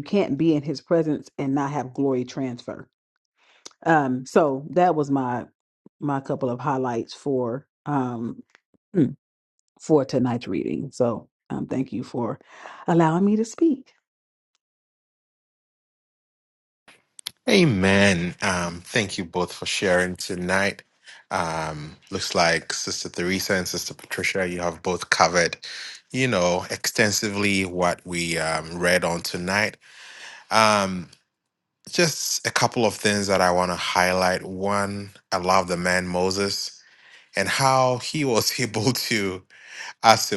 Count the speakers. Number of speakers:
two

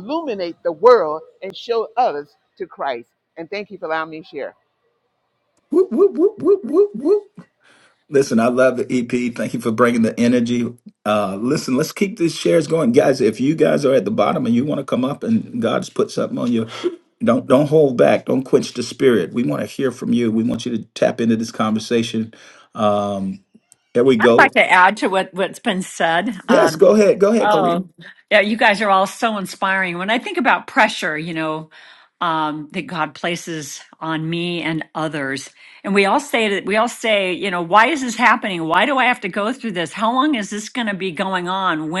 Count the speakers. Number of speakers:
three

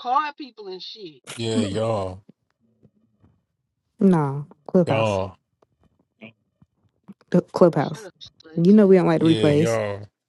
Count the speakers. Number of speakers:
three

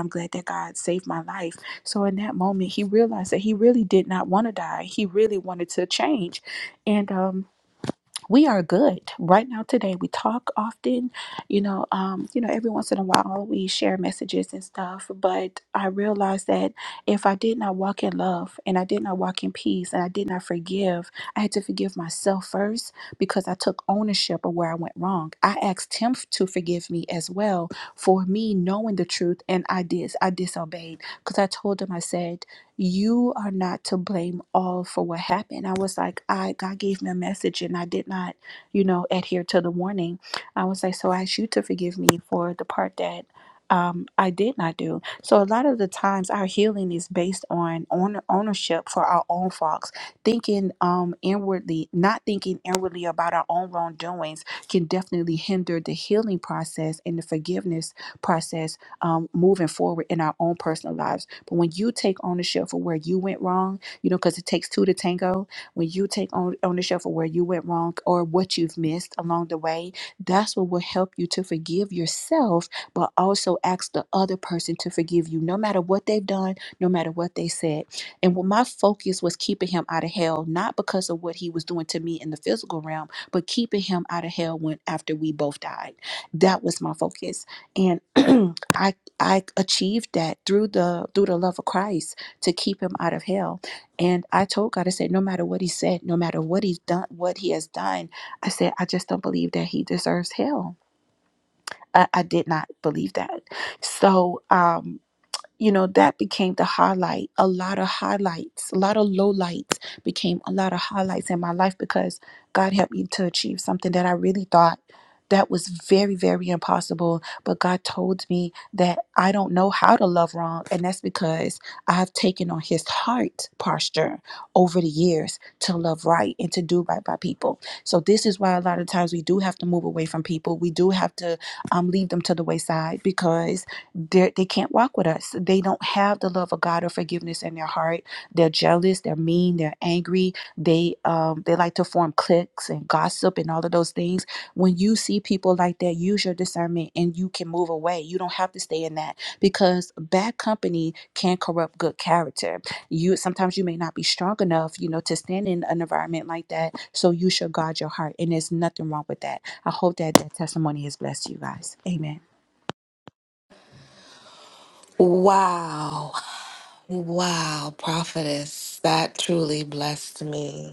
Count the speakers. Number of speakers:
two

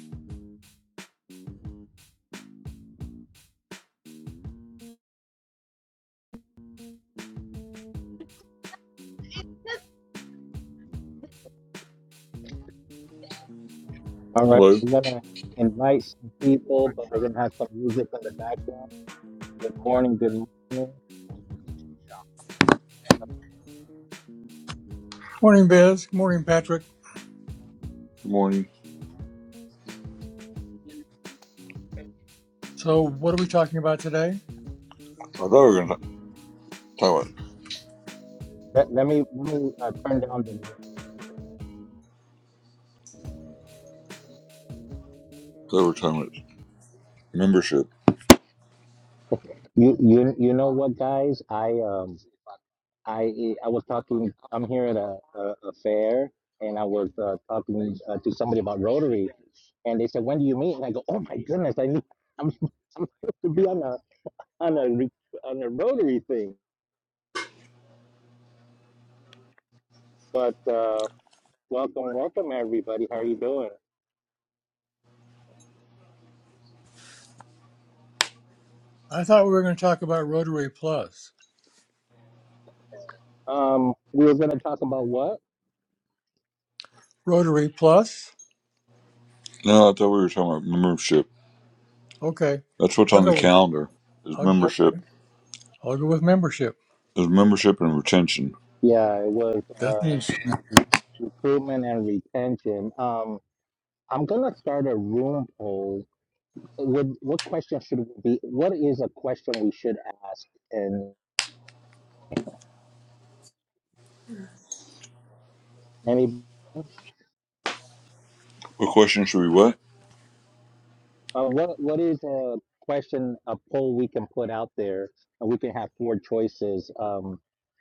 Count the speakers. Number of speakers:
three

